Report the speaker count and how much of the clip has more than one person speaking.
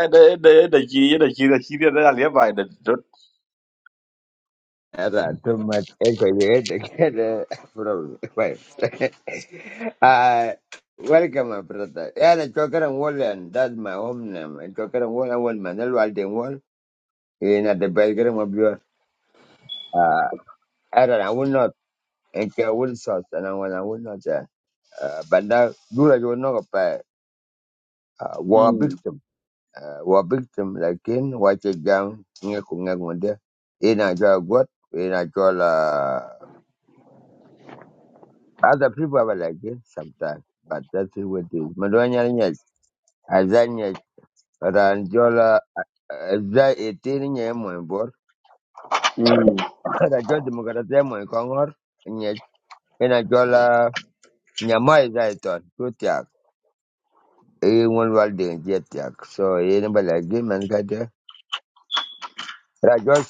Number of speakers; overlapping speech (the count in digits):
2, about 1%